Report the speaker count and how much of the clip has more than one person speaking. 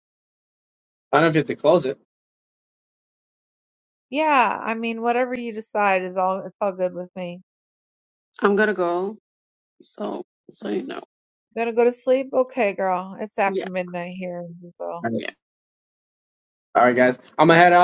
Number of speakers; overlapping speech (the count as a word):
three, about 1%